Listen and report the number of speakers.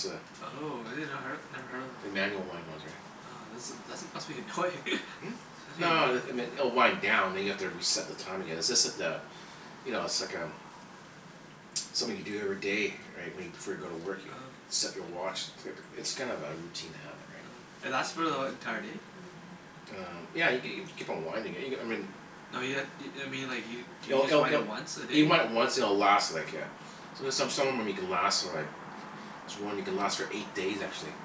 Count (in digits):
2